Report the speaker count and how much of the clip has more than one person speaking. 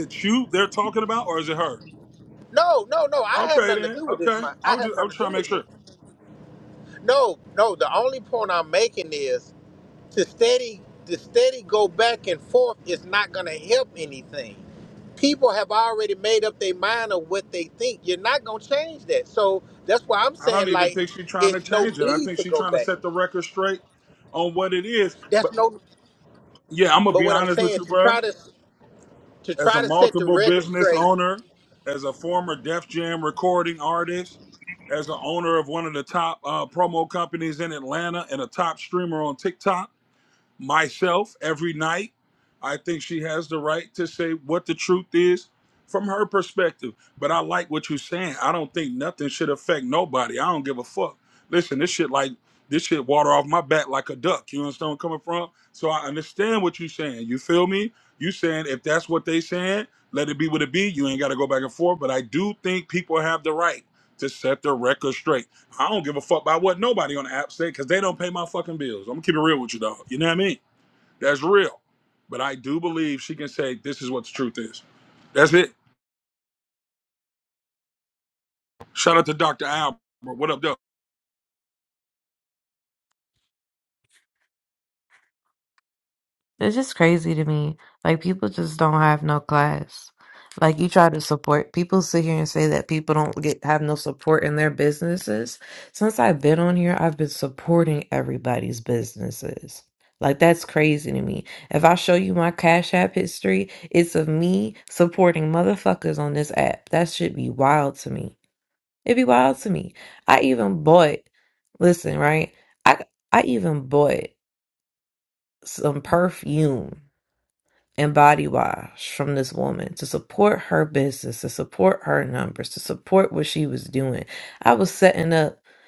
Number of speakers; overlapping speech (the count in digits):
3, about 6%